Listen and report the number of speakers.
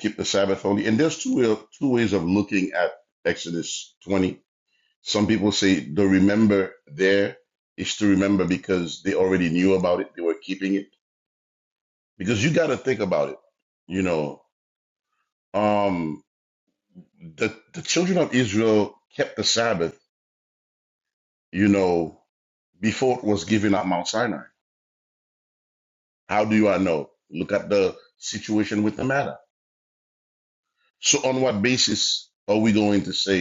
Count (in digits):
1